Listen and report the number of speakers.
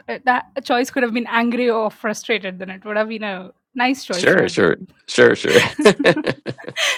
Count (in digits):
2